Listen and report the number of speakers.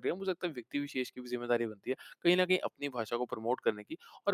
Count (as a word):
one